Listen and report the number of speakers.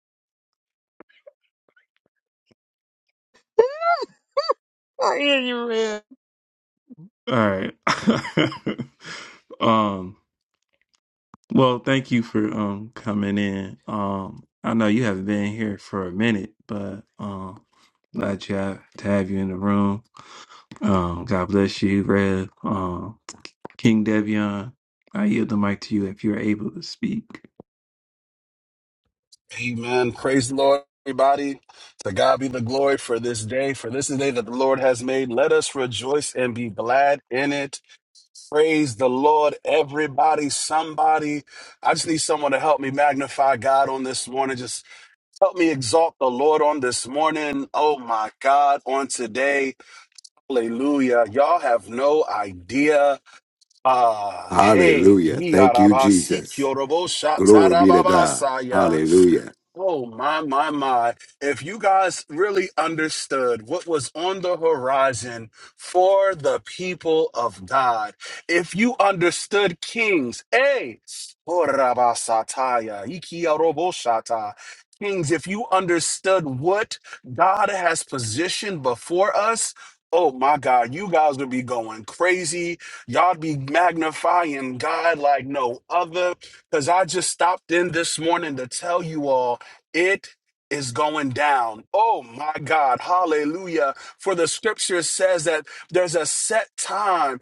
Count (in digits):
4